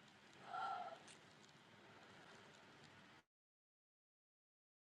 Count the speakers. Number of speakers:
0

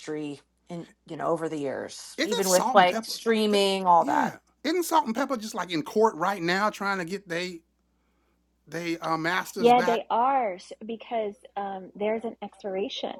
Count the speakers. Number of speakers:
3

